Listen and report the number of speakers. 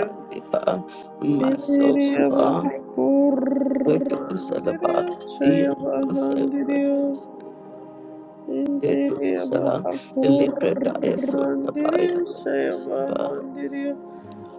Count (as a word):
two